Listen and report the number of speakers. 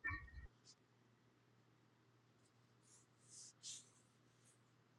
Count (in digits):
0